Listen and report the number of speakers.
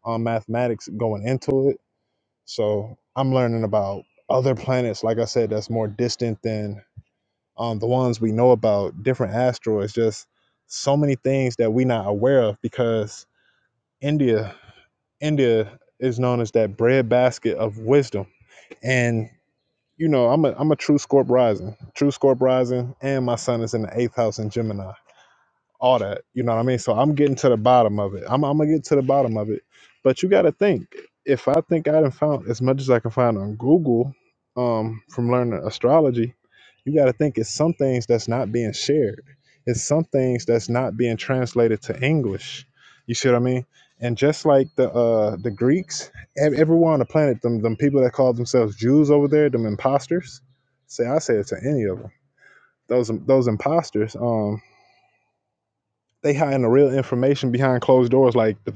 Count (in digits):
1